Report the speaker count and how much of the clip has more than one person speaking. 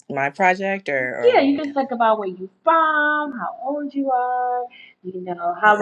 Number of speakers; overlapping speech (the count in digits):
2, about 12%